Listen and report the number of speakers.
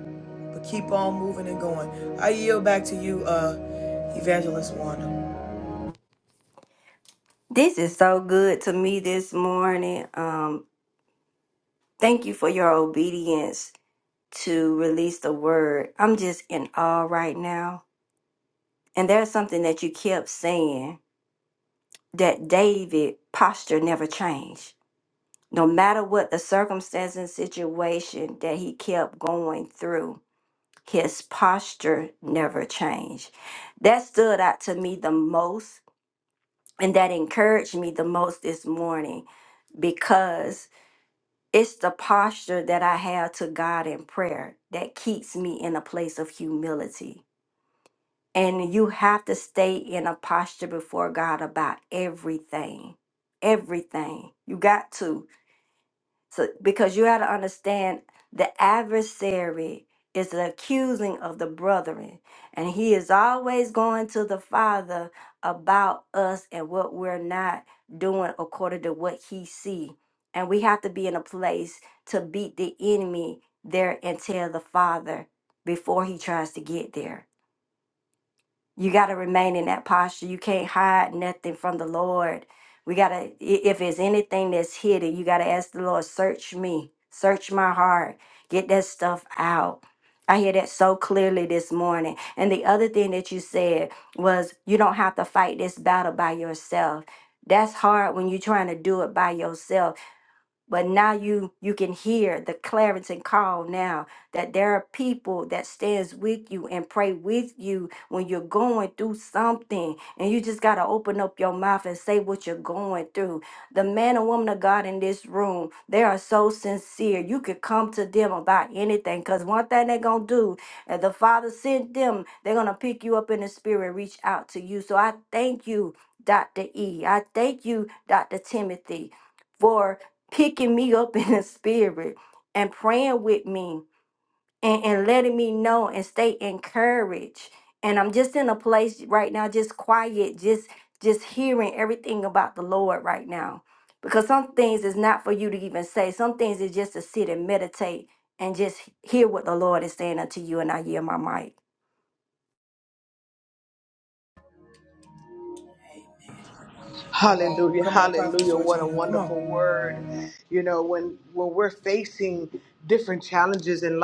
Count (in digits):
3